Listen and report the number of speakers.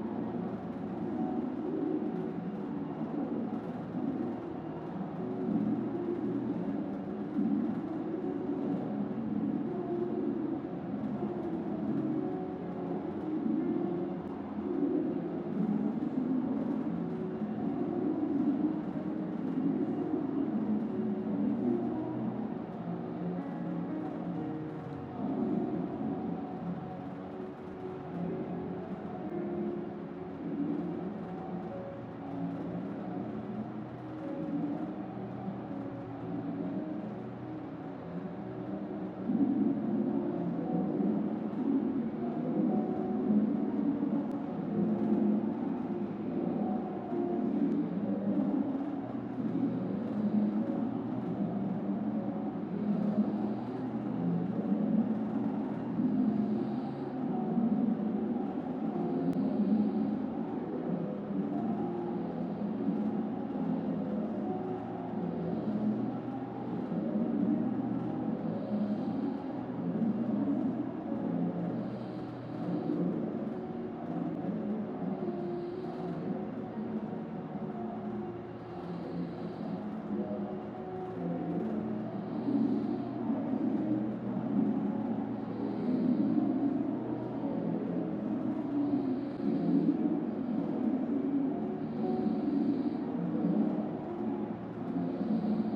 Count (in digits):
0